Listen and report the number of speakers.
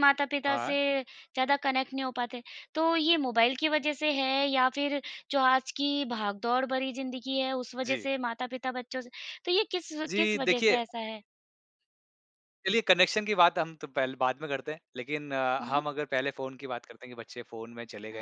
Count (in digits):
2